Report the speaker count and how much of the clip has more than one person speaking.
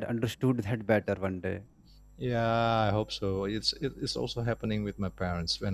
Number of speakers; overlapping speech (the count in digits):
2, no overlap